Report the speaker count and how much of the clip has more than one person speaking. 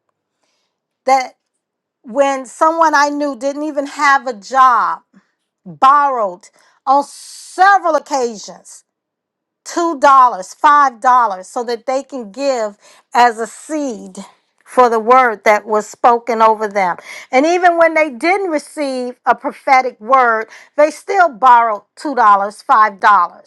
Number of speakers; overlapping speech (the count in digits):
1, no overlap